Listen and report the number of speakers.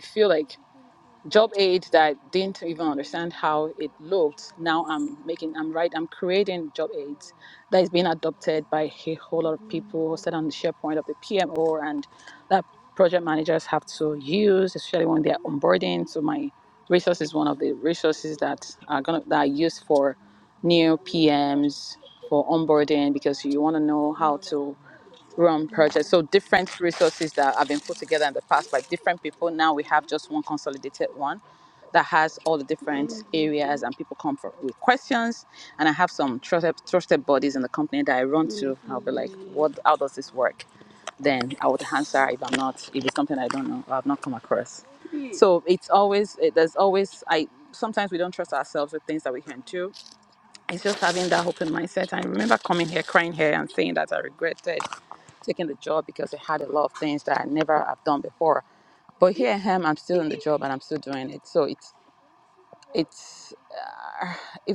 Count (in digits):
1